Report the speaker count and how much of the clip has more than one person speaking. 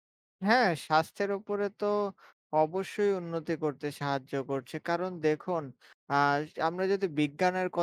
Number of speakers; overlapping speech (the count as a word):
one, no overlap